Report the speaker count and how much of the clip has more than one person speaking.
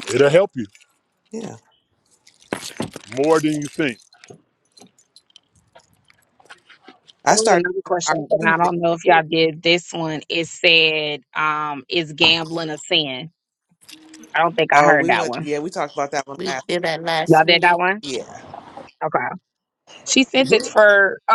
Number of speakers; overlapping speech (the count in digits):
4, about 13%